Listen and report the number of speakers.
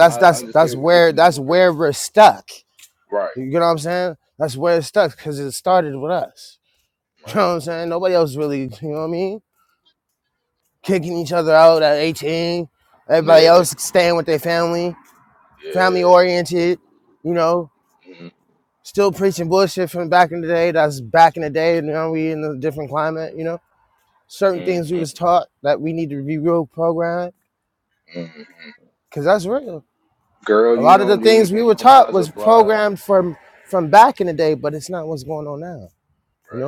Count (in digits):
2